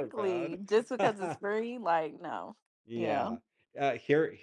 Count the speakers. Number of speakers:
two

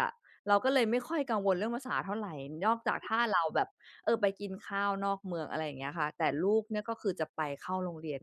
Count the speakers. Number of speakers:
one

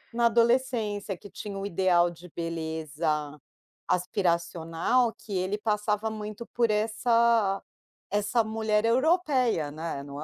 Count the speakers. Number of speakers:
one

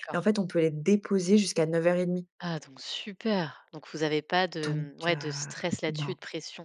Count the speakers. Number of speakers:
two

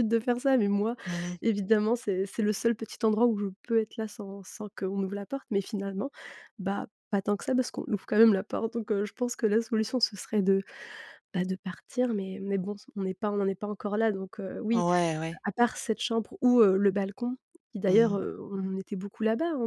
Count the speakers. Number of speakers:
two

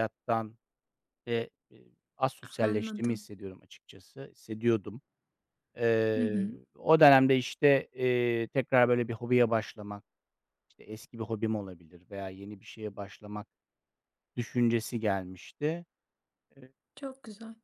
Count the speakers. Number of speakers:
two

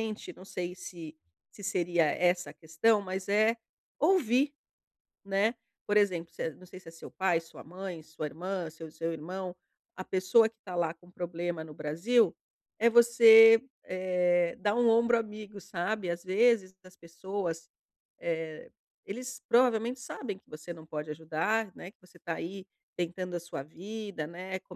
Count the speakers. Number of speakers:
one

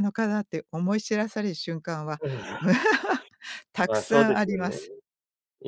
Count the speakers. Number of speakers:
two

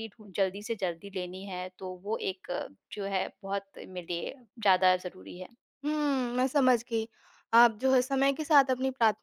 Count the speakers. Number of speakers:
two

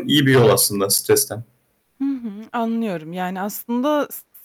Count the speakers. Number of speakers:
two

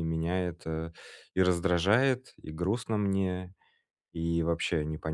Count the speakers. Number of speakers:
one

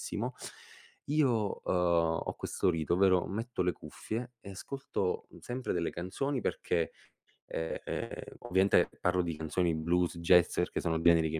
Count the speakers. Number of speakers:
one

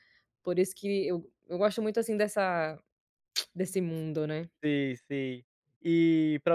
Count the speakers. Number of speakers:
two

